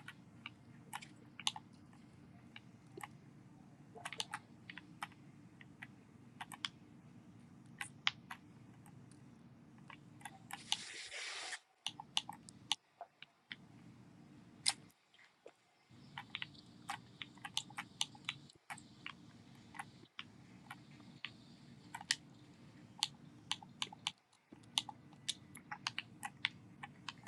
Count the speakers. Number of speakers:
0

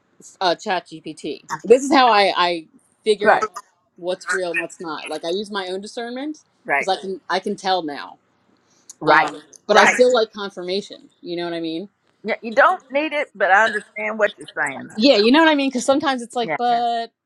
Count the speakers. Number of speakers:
2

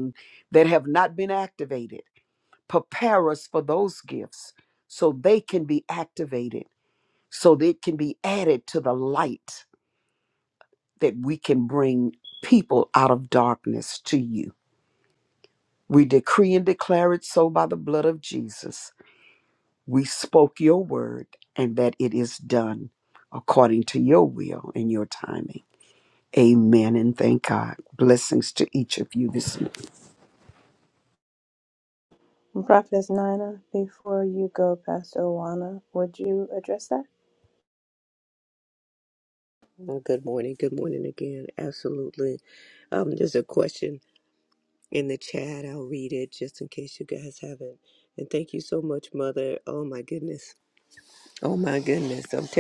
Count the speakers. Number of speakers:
3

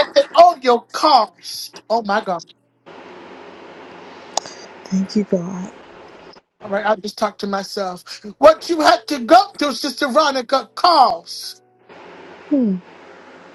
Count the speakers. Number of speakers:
2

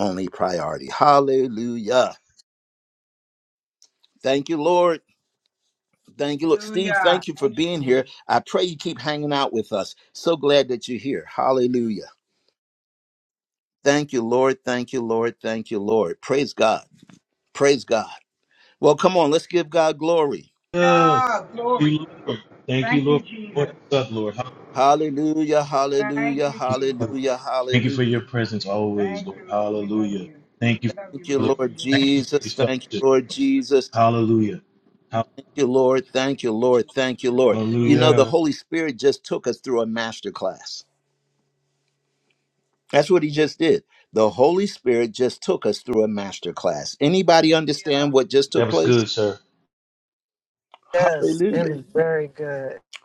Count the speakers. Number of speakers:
4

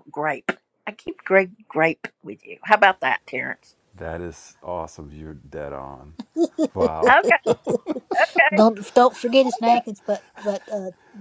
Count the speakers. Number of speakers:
3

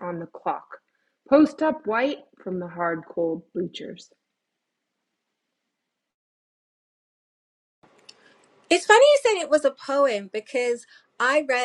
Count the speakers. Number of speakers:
2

